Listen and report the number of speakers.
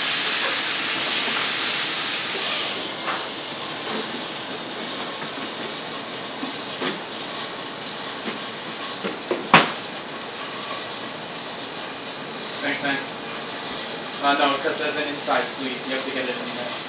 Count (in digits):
1